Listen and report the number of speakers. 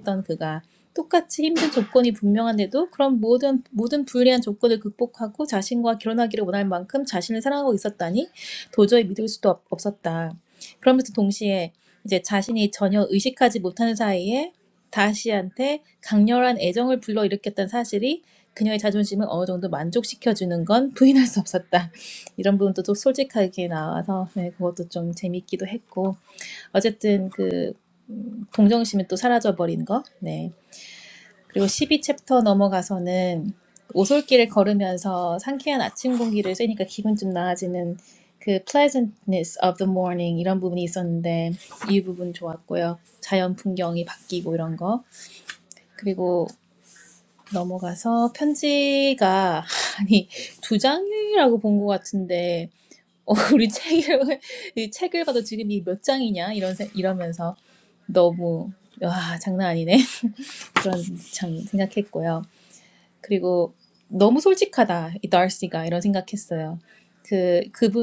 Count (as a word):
one